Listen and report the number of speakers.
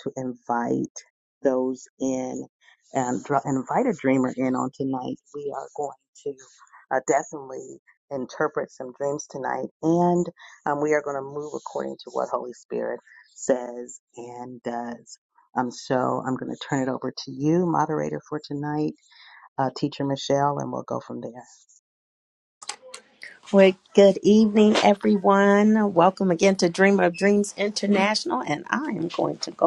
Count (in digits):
2